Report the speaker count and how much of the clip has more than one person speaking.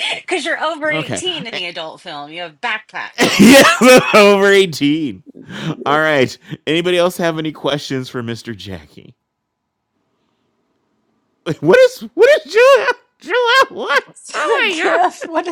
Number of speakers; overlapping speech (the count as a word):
three, about 7%